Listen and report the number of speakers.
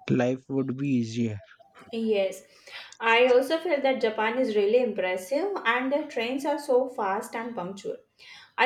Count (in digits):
2